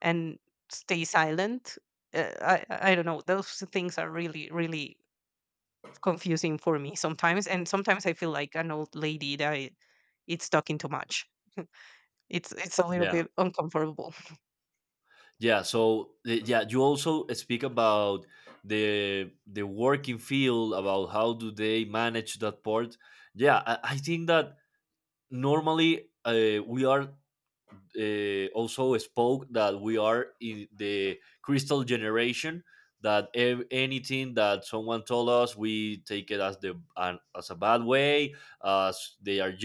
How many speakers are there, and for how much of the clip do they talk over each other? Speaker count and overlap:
2, about 1%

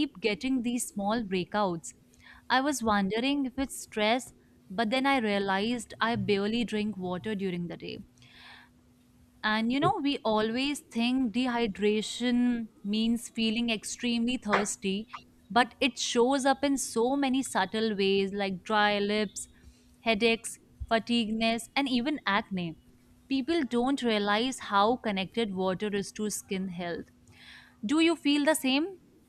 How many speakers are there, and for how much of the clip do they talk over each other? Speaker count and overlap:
1, no overlap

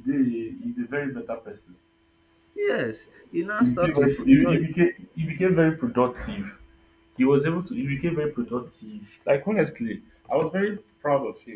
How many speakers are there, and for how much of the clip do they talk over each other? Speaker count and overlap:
2, about 9%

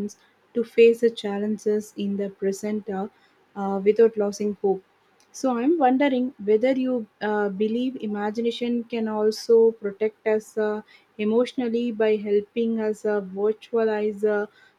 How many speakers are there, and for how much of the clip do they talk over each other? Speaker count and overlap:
1, no overlap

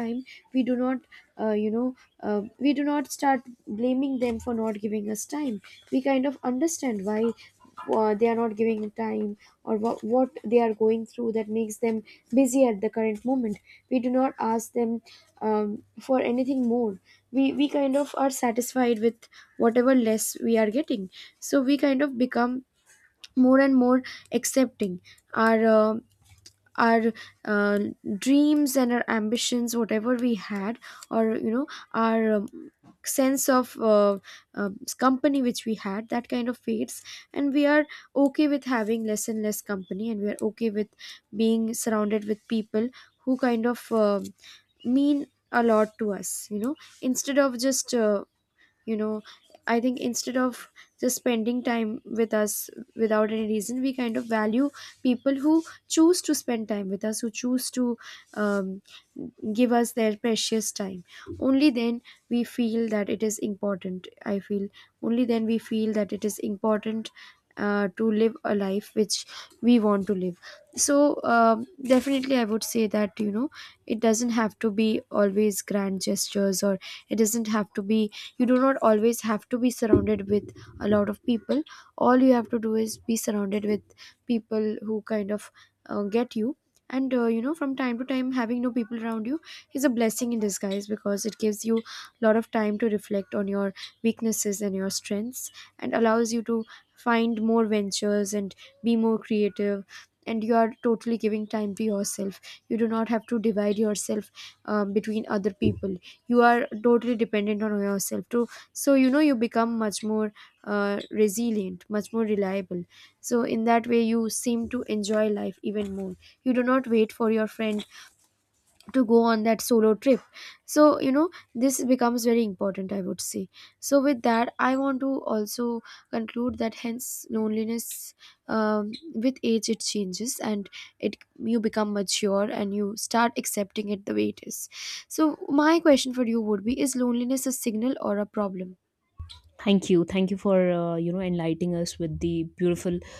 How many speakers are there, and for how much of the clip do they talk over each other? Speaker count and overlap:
2, no overlap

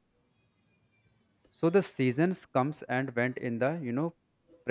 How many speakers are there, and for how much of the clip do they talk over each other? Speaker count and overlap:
1, no overlap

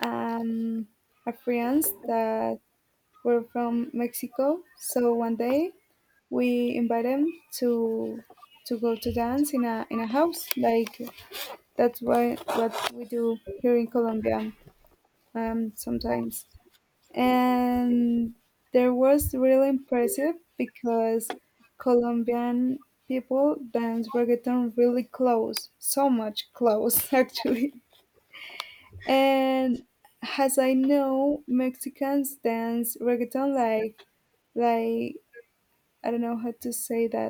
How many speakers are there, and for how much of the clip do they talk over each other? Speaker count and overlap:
1, no overlap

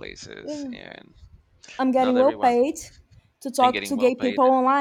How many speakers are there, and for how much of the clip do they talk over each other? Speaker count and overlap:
2, about 37%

